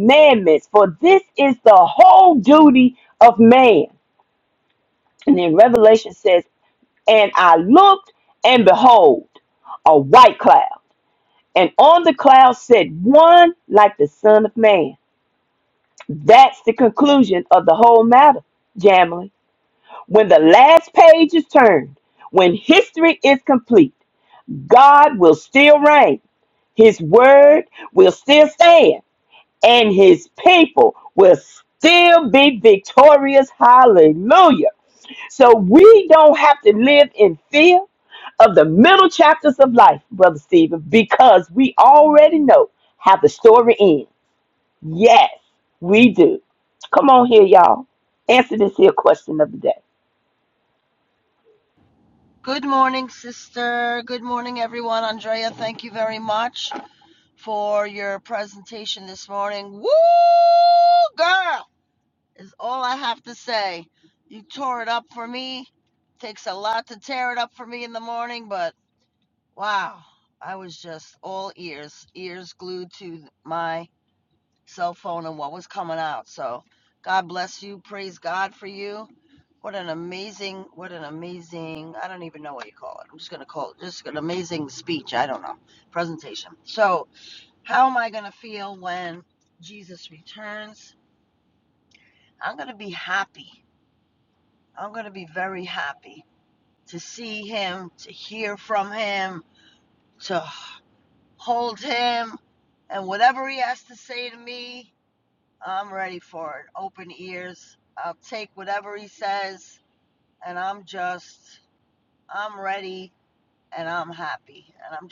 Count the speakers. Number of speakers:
two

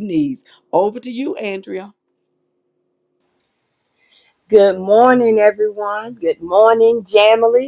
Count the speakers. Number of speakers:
two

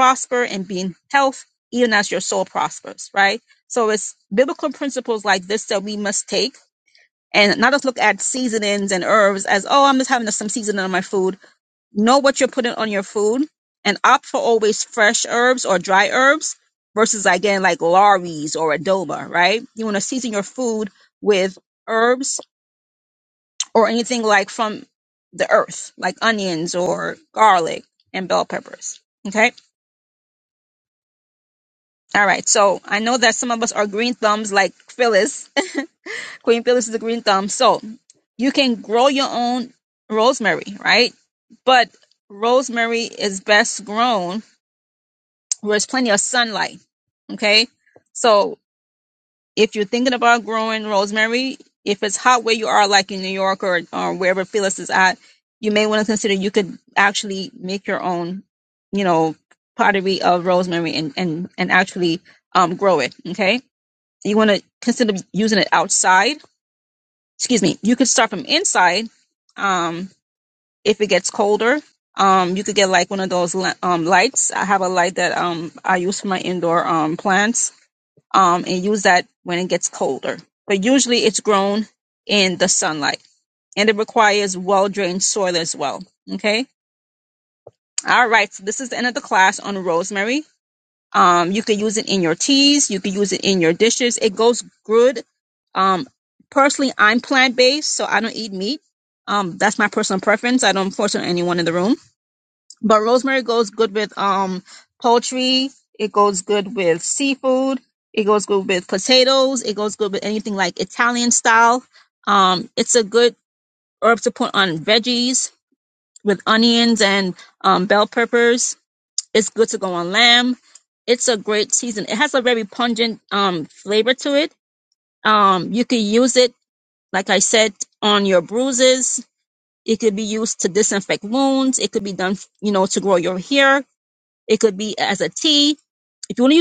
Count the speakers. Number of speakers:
one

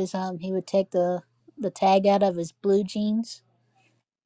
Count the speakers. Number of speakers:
one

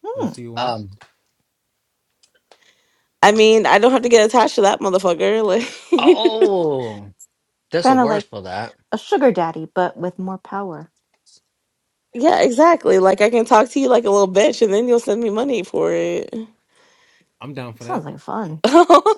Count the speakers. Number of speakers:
four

